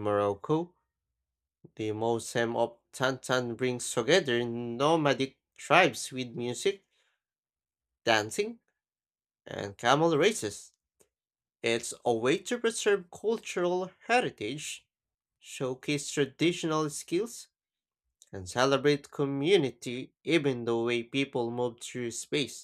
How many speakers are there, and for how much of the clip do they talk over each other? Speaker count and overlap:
one, no overlap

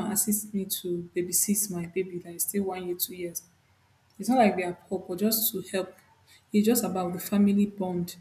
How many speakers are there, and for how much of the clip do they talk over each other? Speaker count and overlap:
one, no overlap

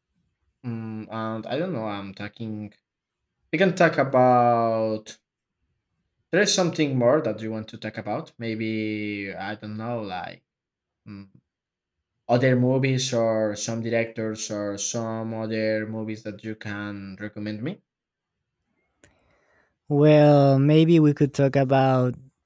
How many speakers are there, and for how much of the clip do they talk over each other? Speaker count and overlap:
two, no overlap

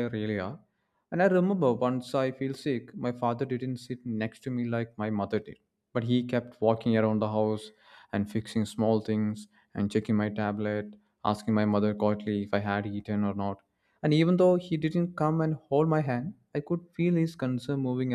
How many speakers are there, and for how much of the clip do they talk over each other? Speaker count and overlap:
one, no overlap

